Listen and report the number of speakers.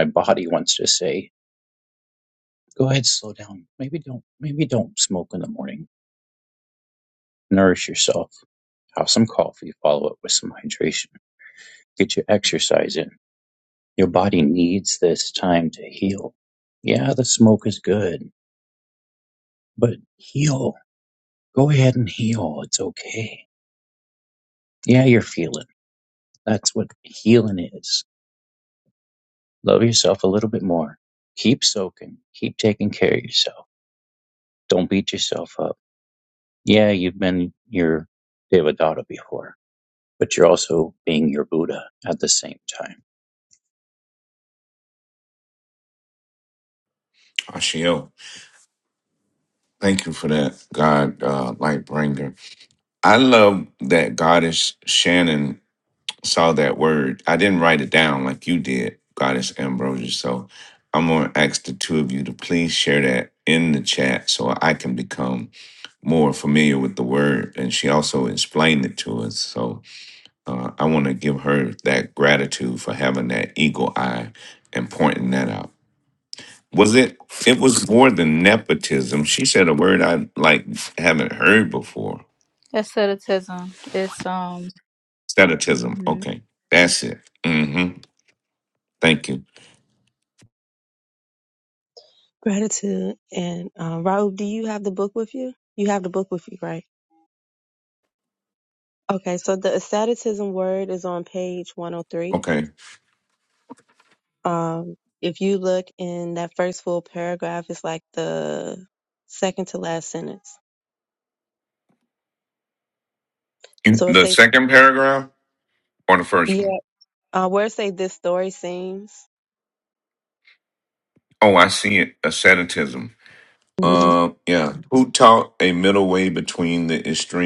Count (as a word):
four